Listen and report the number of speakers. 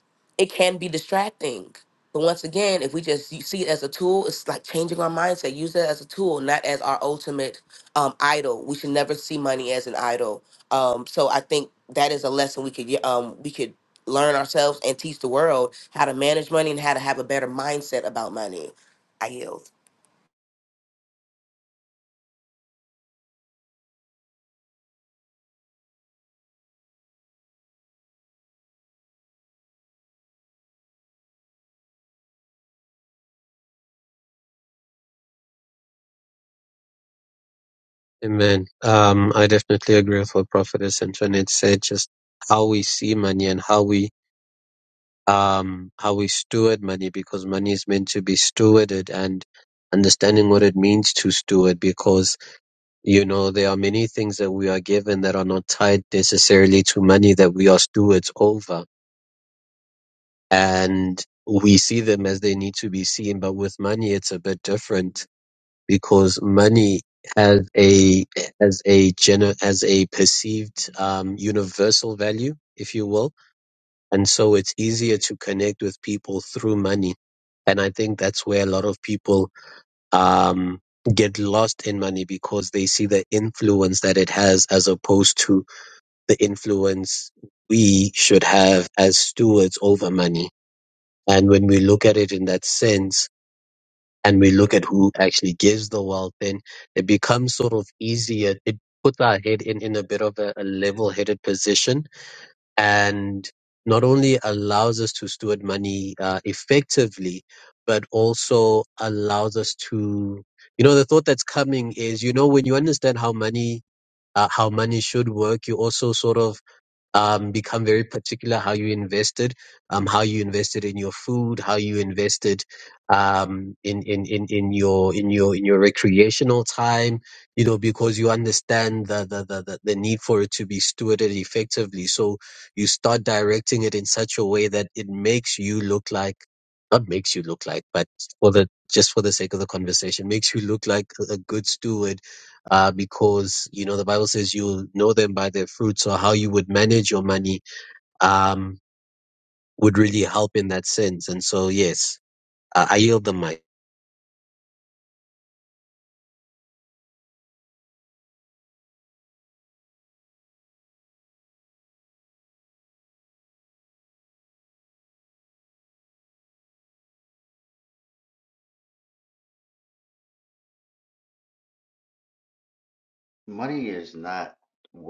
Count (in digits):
3